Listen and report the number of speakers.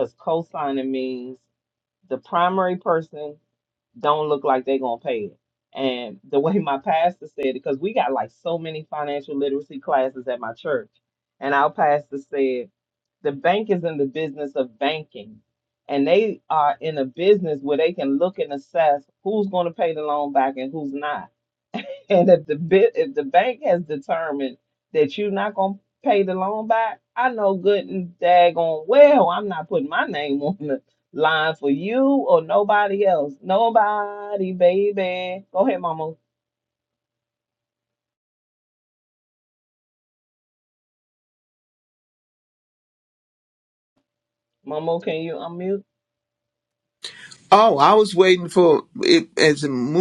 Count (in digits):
2